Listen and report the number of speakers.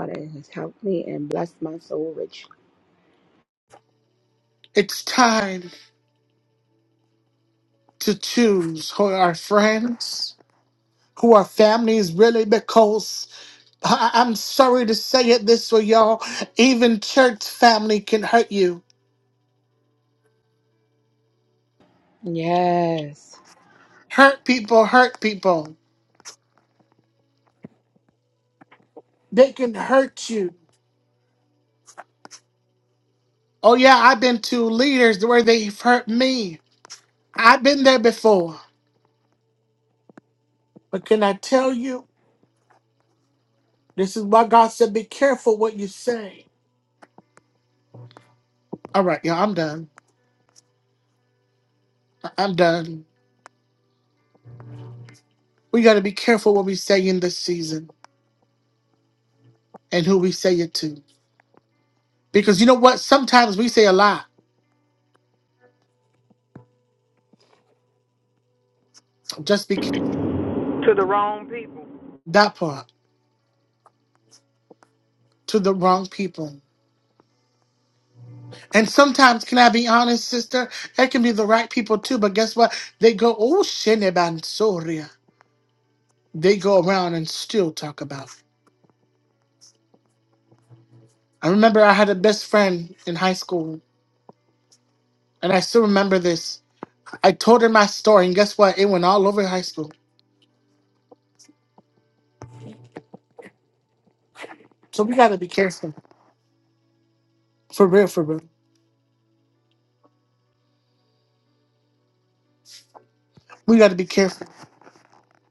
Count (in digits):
3